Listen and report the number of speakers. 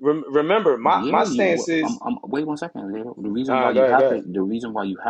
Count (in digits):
2